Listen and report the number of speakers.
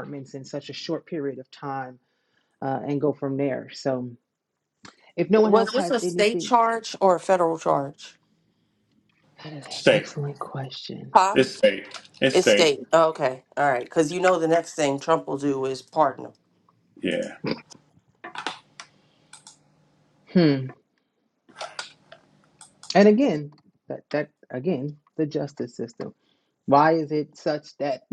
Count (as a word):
three